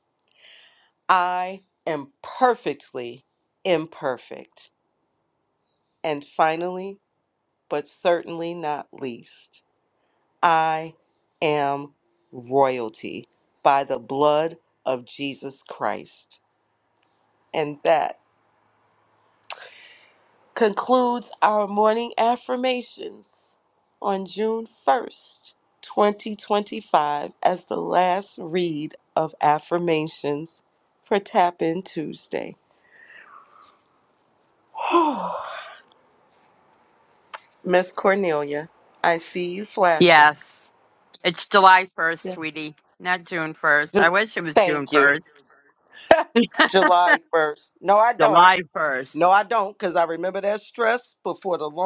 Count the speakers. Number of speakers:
2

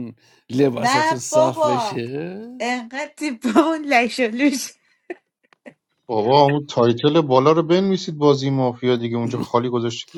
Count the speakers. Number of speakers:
3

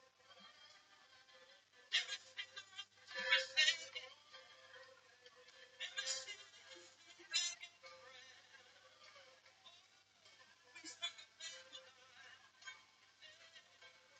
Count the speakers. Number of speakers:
0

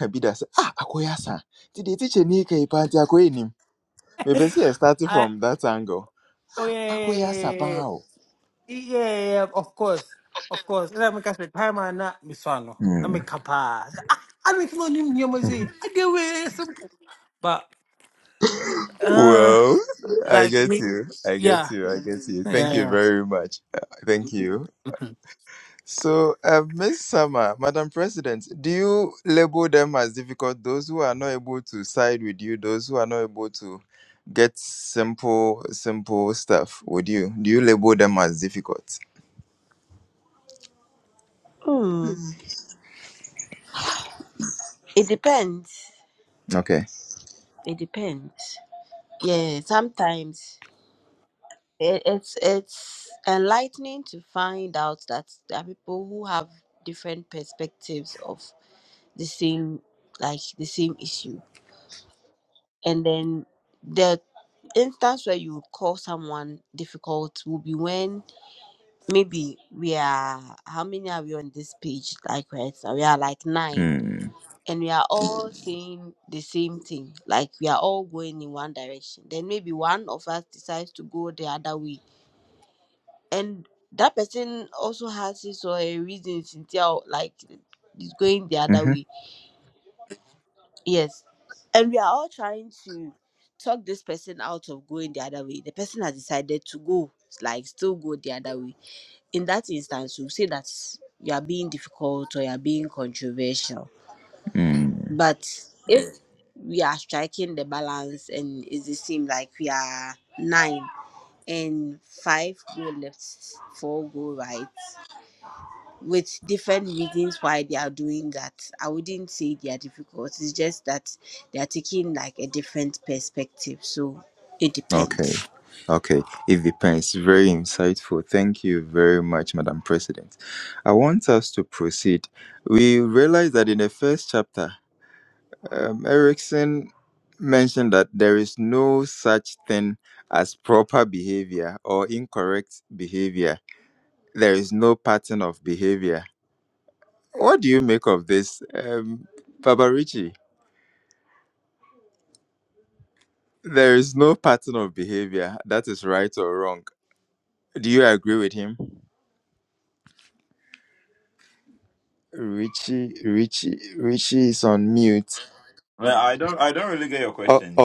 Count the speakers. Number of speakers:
4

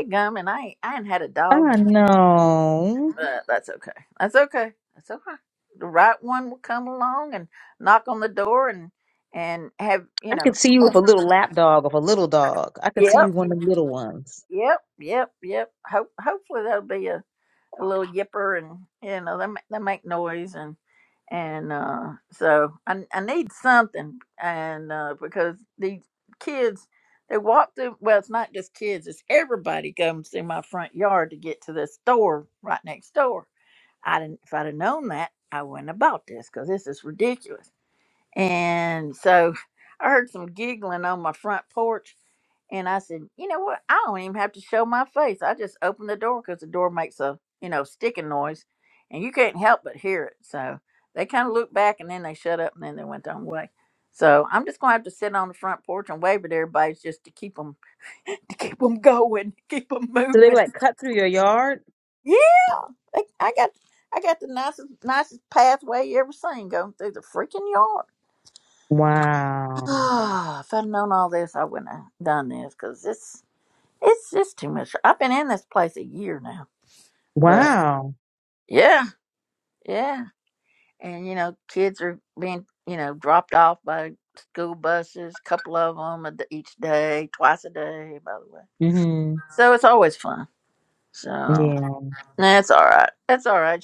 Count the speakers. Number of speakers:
2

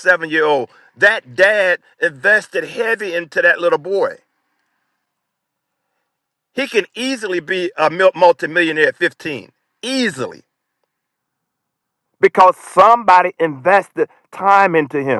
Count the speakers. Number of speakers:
1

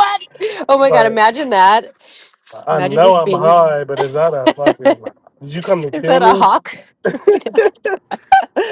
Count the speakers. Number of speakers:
2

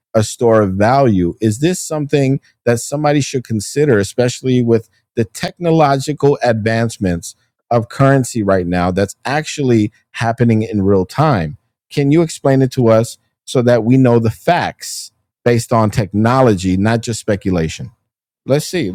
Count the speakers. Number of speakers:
1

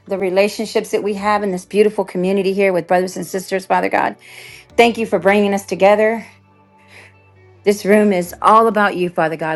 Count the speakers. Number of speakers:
1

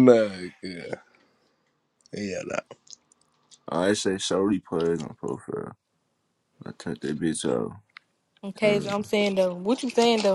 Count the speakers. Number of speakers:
3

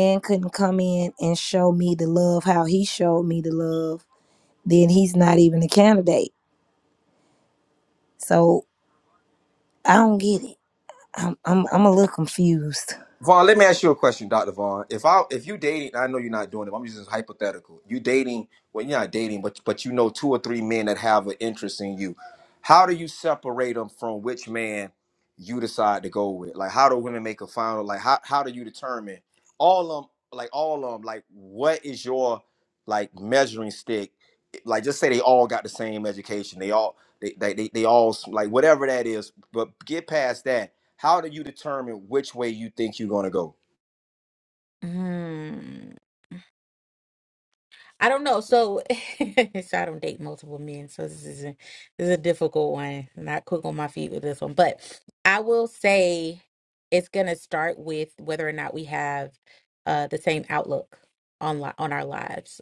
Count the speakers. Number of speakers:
3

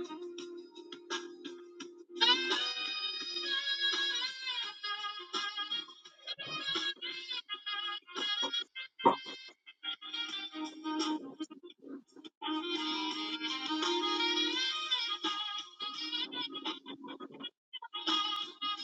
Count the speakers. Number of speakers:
0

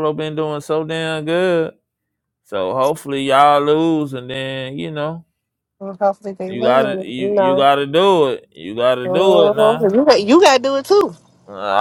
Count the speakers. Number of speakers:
2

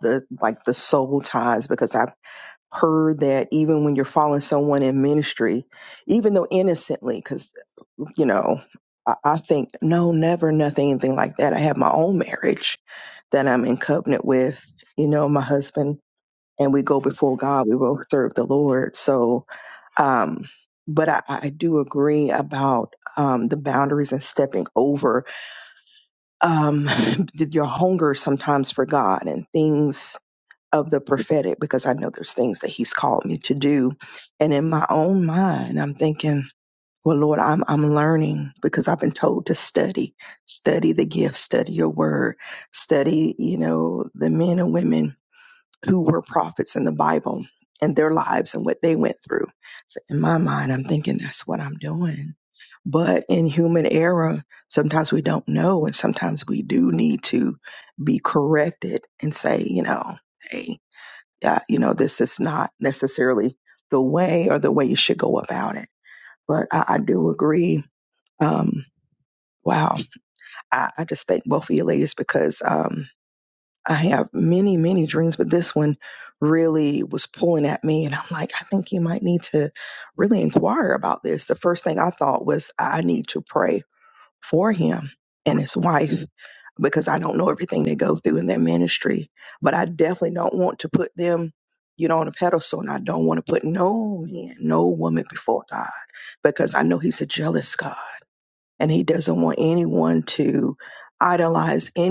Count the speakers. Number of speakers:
1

